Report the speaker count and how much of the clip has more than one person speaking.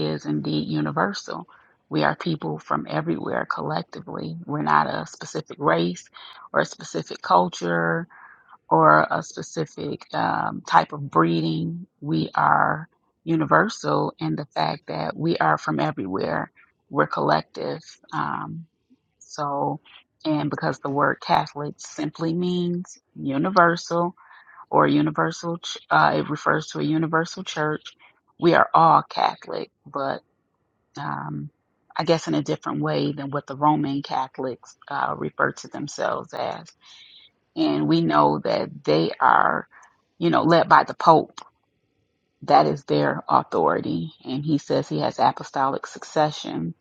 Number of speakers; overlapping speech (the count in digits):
1, no overlap